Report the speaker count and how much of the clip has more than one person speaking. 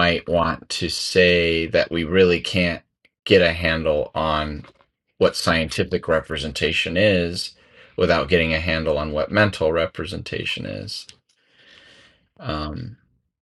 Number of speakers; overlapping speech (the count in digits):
1, no overlap